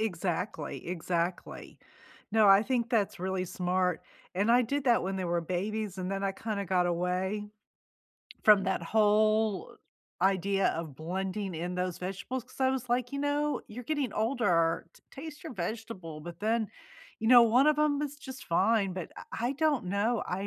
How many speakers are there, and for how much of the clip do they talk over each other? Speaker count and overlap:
1, no overlap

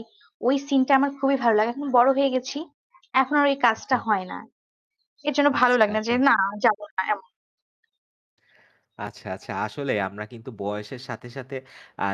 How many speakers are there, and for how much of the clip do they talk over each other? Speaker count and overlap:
2, about 8%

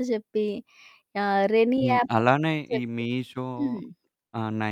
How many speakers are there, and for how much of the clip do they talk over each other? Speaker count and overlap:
2, about 17%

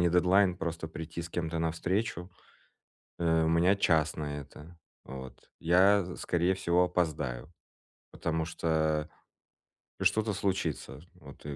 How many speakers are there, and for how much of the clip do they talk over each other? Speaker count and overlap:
1, no overlap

